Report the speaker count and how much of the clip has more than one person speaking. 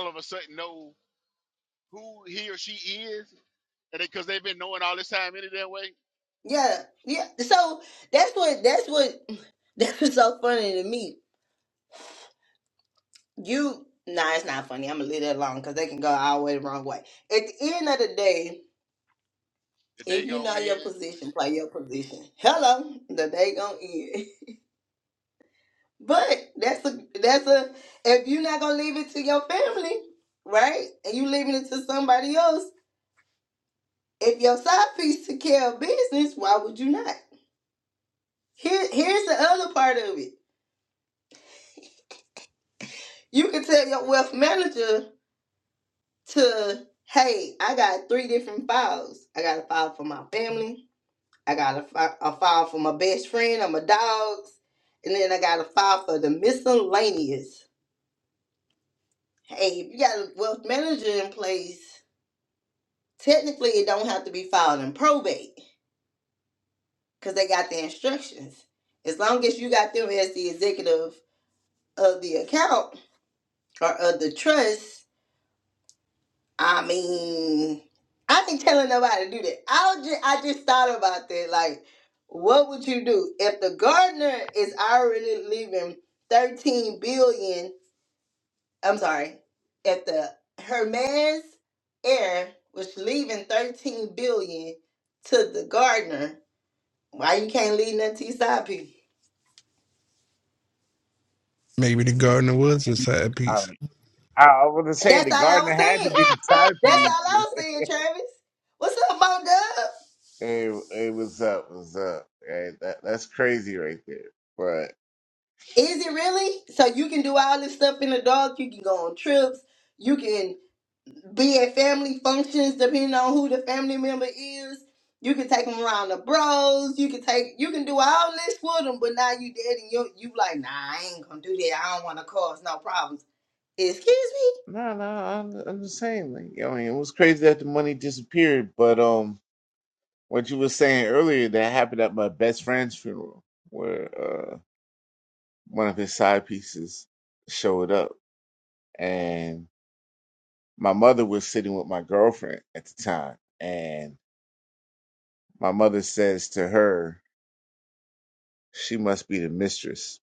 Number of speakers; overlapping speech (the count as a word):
four, about 2%